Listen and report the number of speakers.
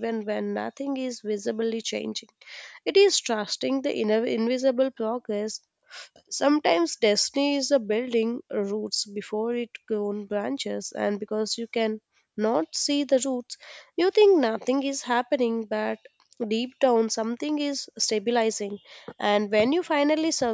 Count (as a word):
one